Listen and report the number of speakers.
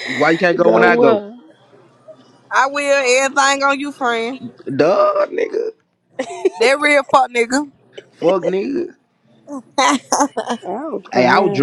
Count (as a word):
three